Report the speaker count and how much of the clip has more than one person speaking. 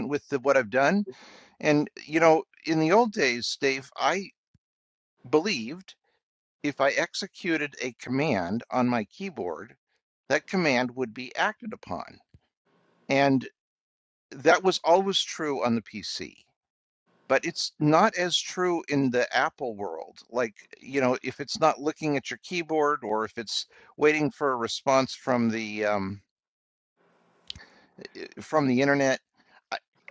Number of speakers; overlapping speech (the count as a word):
one, no overlap